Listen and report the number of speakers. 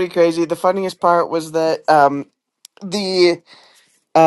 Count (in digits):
1